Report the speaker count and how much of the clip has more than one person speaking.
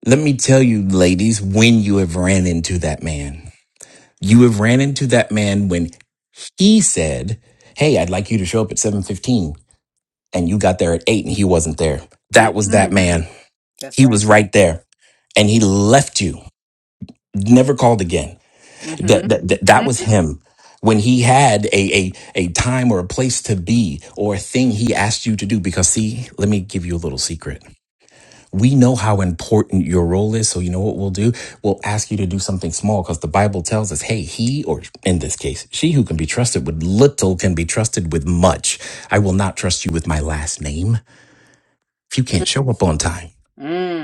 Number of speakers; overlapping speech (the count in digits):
2, about 3%